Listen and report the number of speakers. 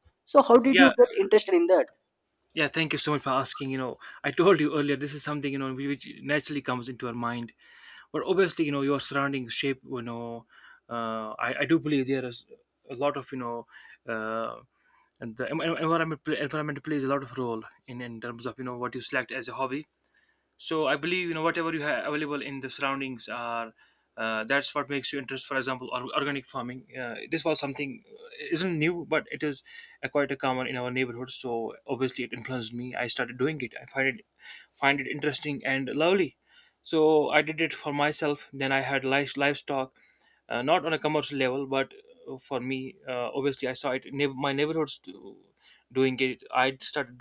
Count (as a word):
two